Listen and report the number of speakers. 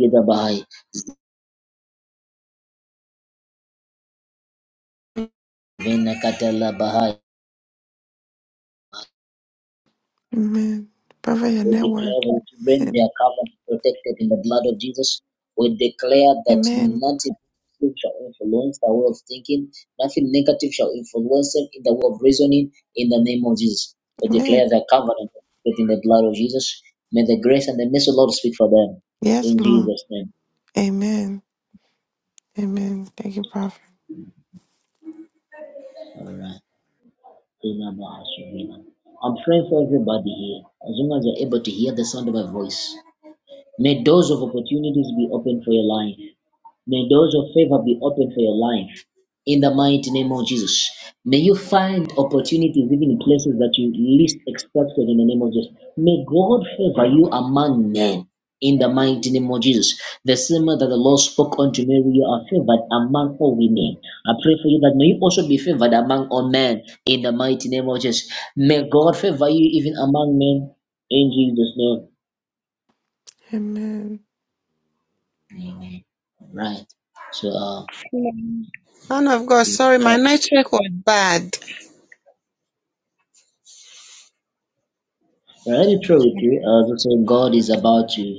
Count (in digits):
3